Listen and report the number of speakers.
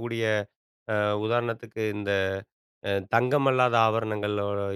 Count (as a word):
one